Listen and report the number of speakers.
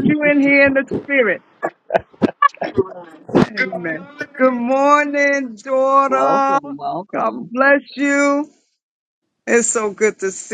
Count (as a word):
two